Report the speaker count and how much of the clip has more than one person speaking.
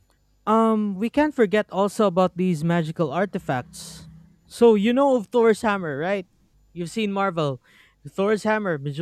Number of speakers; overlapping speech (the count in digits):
1, no overlap